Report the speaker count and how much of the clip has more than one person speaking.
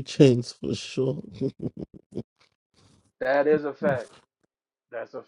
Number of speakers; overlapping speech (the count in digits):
2, no overlap